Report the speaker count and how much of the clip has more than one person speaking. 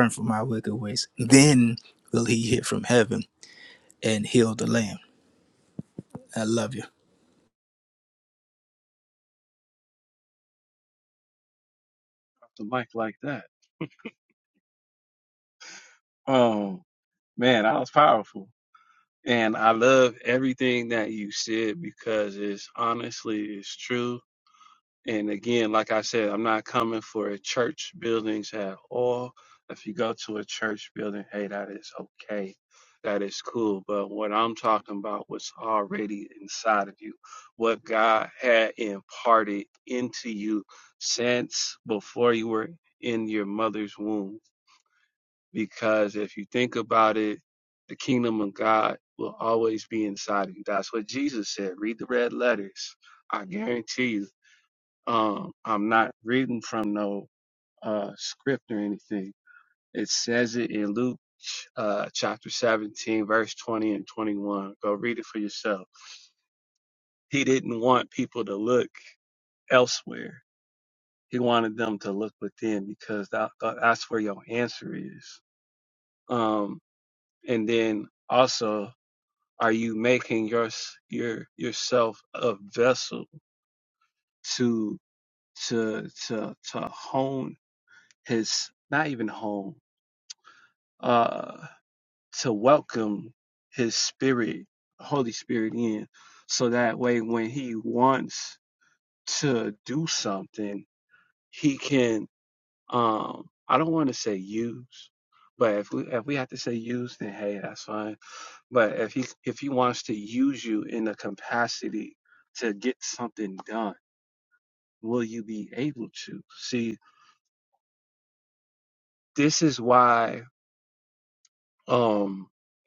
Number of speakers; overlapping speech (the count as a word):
two, no overlap